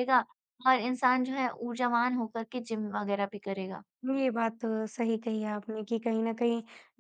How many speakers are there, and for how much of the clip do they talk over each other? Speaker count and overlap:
2, no overlap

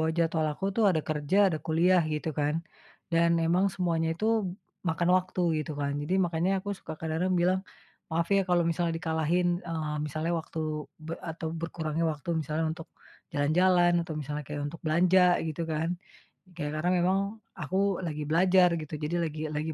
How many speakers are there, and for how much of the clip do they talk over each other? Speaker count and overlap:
1, no overlap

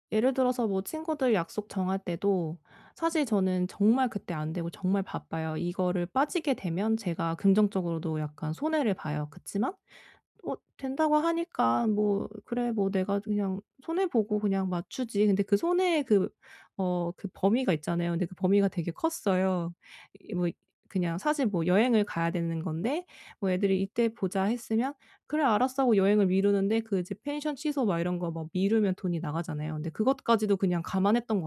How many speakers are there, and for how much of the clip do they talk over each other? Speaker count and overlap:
1, no overlap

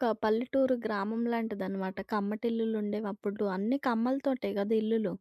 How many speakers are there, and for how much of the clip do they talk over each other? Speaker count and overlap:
1, no overlap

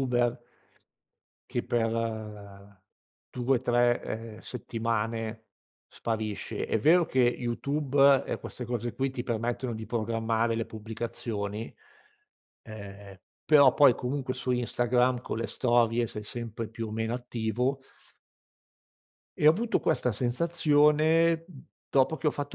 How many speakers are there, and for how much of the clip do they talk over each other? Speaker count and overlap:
1, no overlap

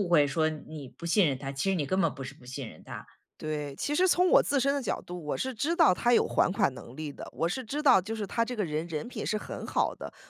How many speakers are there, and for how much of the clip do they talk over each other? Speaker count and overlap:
2, no overlap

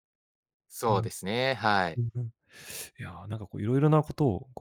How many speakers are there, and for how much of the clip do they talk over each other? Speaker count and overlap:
2, about 4%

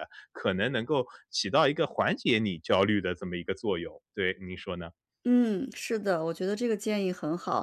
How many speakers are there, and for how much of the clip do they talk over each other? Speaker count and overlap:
2, no overlap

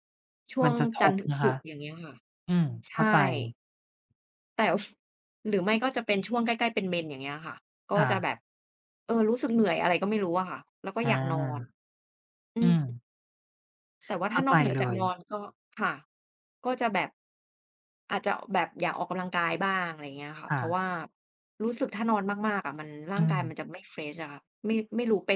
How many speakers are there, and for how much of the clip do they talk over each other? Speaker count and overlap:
2, about 12%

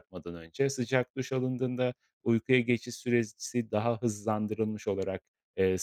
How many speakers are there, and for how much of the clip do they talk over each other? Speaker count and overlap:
1, no overlap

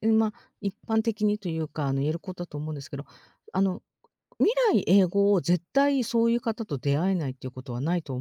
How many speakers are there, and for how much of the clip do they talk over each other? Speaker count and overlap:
1, no overlap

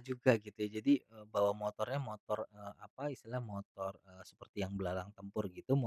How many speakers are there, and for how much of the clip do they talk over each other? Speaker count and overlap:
1, no overlap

